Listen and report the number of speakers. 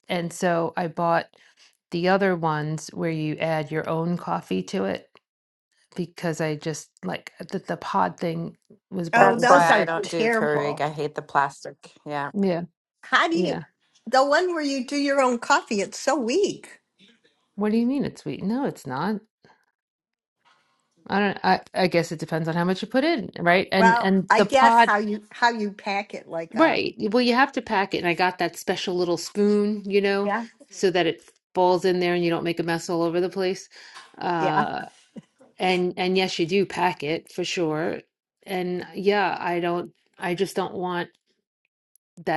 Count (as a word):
three